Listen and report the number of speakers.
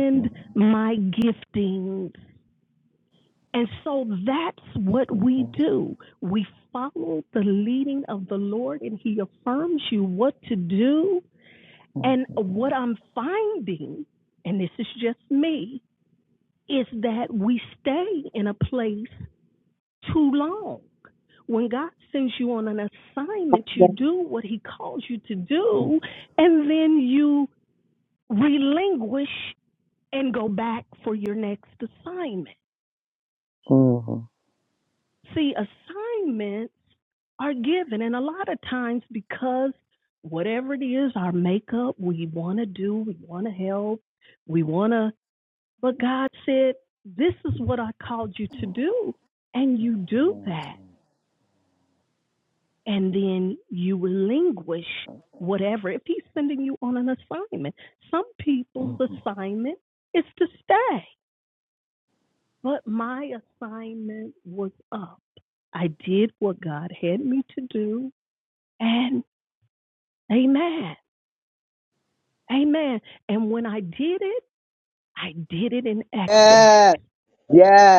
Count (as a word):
three